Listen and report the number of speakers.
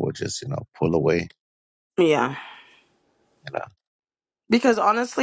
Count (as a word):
two